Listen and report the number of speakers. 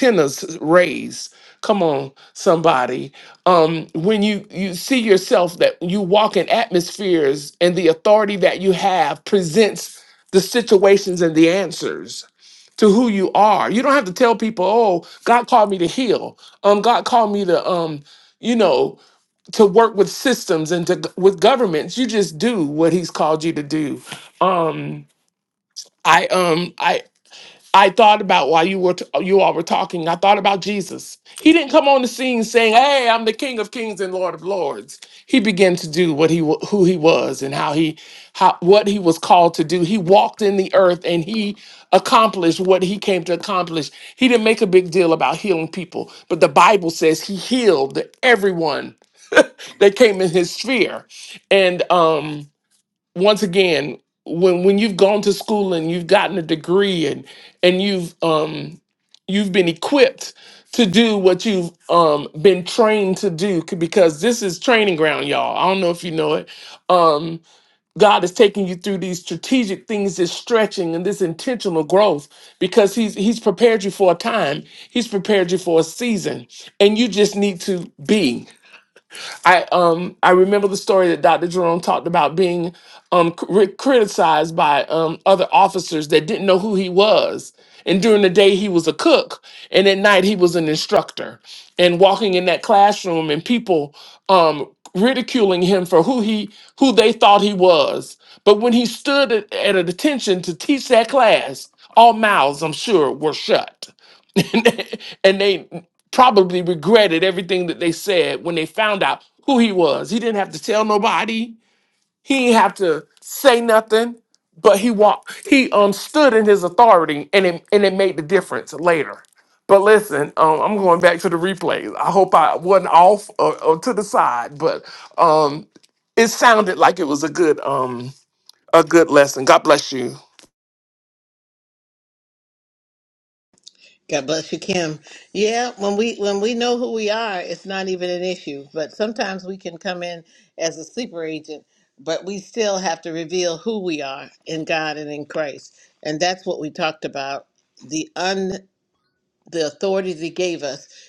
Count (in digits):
2